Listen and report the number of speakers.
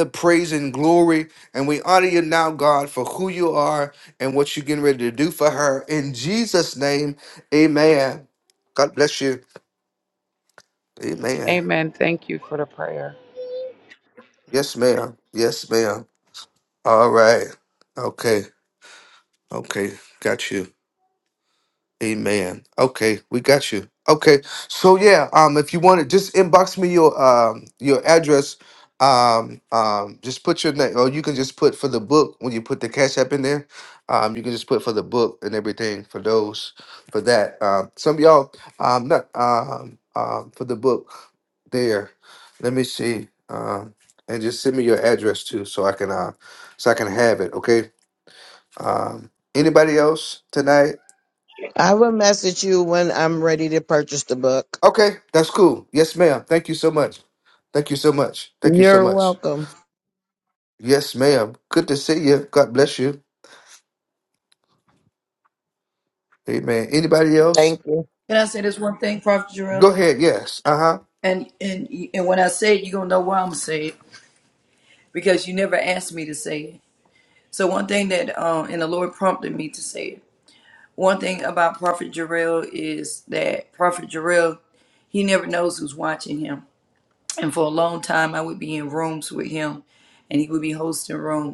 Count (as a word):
four